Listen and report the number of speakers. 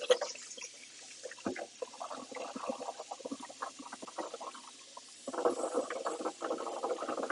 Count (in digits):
0